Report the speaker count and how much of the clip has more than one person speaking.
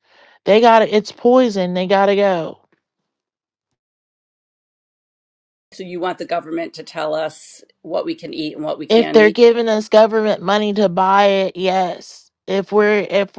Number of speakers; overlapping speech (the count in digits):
2, about 3%